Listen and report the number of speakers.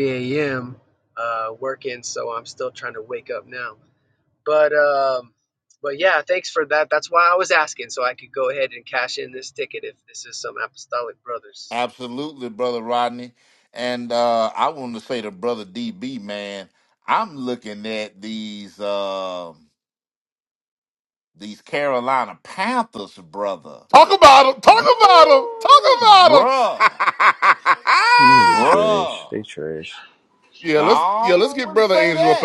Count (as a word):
four